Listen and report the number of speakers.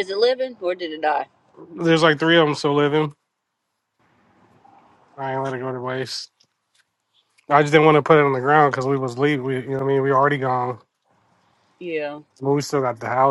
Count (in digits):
2